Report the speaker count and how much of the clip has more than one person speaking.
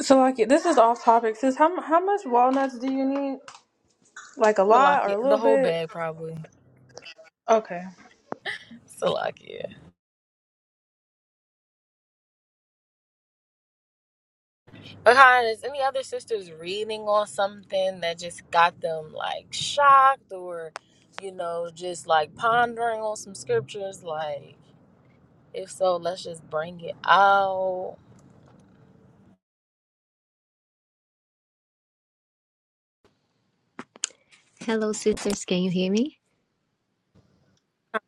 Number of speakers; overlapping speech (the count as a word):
three, about 3%